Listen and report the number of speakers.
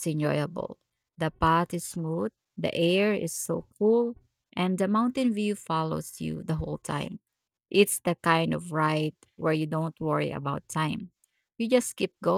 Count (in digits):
1